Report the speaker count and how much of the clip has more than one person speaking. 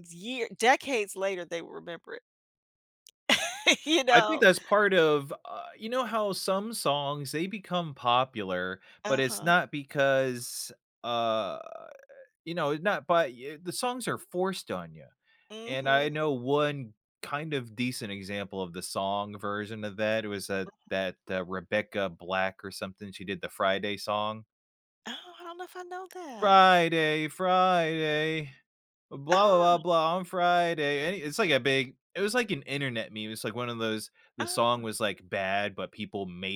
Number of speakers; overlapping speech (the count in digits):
2, about 7%